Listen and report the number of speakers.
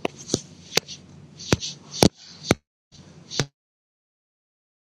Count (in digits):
0